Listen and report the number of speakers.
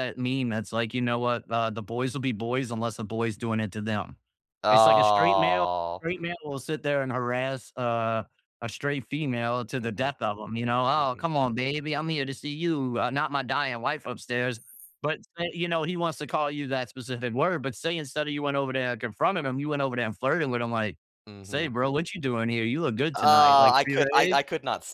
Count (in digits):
2